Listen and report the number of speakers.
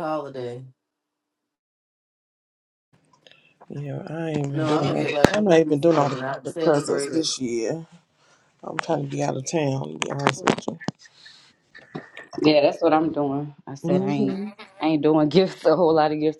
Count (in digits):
3